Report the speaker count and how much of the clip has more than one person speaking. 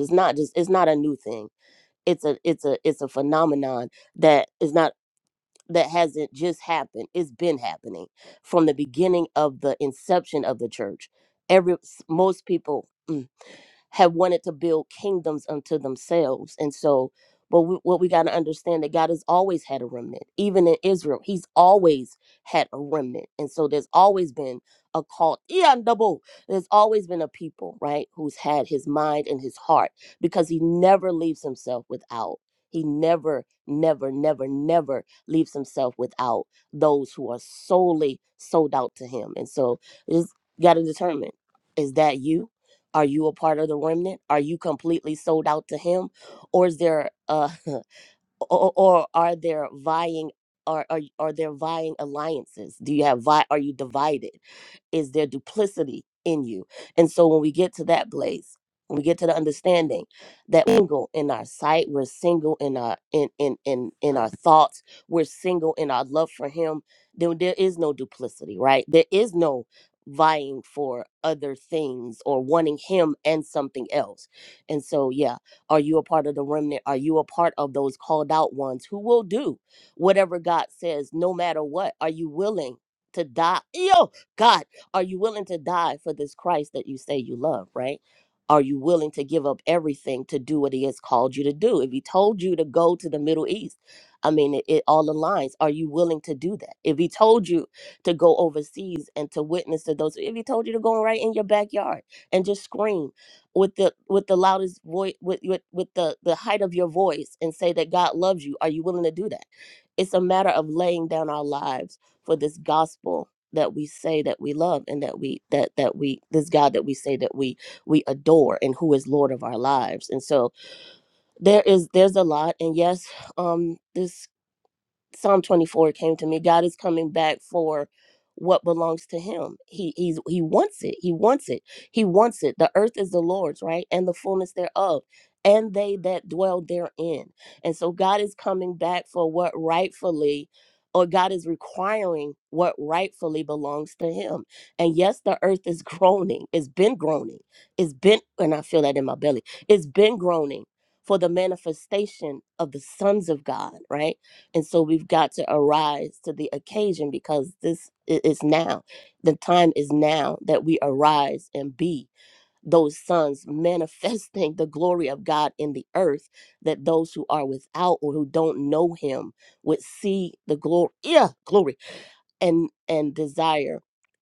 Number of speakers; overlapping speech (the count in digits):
1, no overlap